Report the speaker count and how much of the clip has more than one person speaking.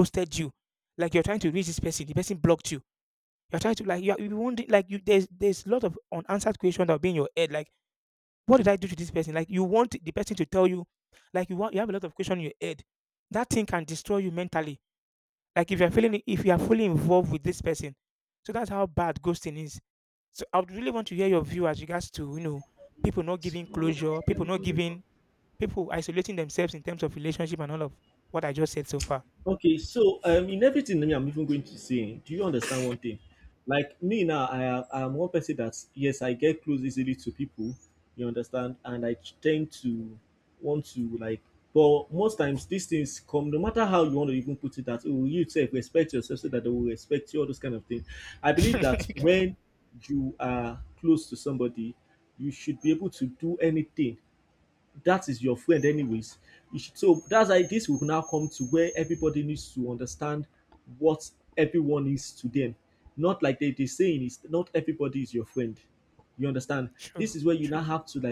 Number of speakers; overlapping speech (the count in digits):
2, about 1%